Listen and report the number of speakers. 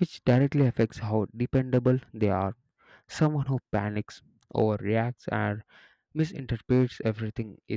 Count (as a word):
one